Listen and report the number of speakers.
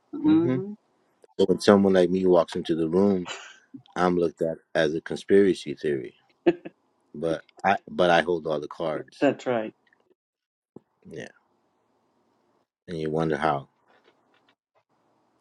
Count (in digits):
2